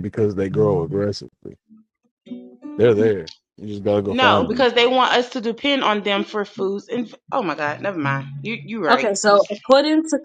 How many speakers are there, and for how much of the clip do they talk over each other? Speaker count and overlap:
three, about 12%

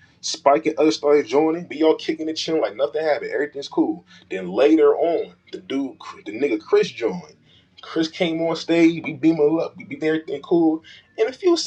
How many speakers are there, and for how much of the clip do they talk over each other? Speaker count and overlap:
one, no overlap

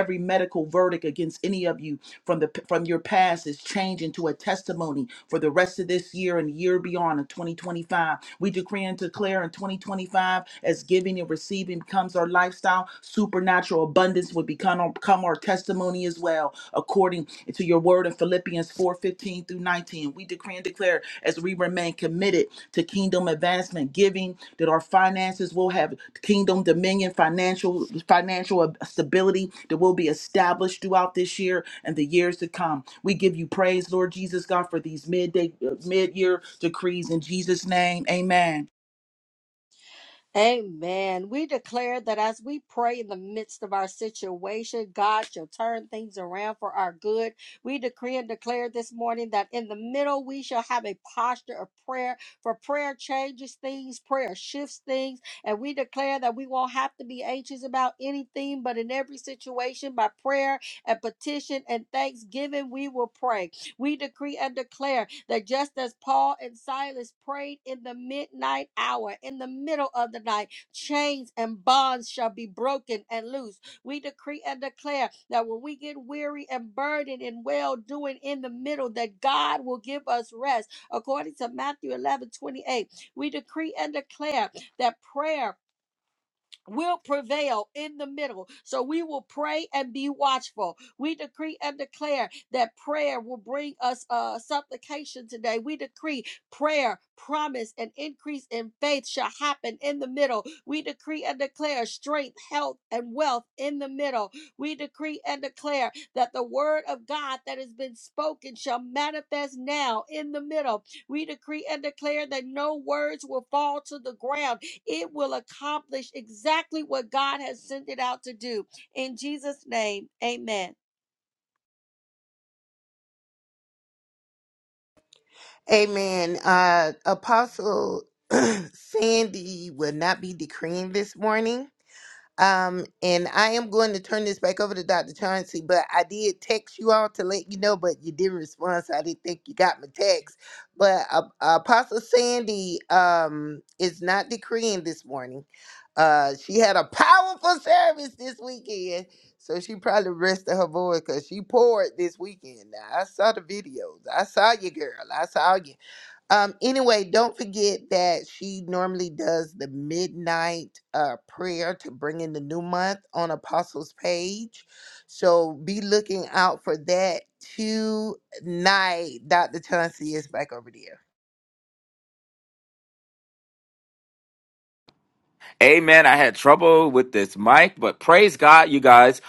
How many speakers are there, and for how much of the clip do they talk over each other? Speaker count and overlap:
four, no overlap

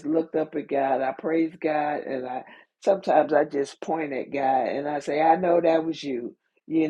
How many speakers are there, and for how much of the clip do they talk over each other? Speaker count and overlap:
one, no overlap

